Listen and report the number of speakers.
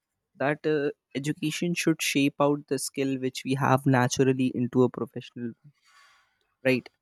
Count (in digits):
1